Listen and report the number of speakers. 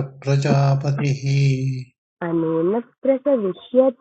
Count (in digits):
2